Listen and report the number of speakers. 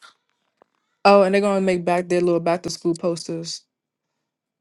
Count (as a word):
one